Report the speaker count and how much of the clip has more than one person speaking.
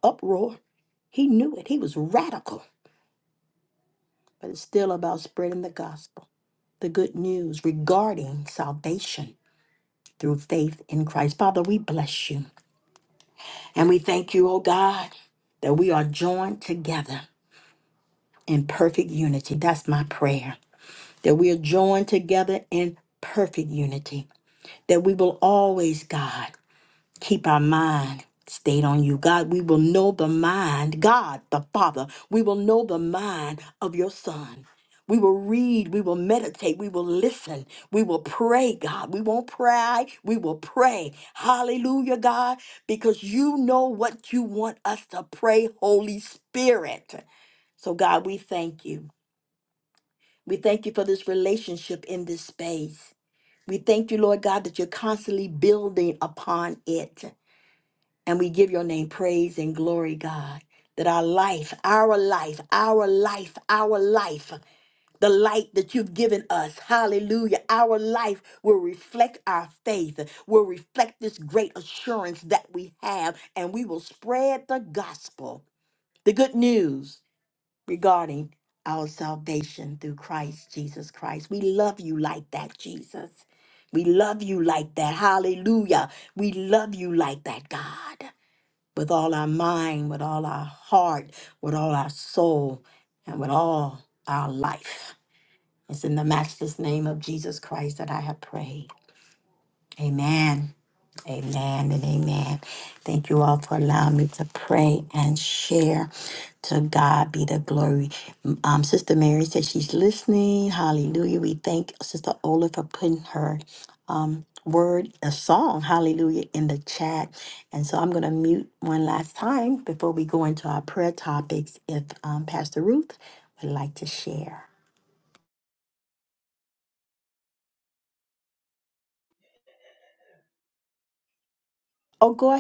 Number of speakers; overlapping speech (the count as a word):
one, no overlap